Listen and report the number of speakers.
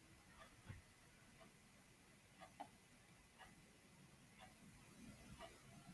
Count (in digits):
0